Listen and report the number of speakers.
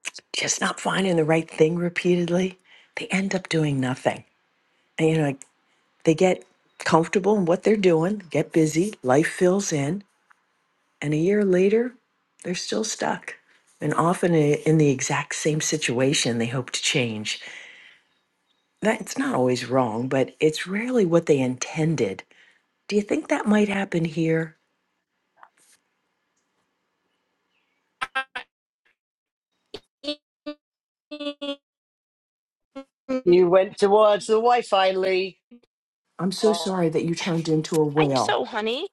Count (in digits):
3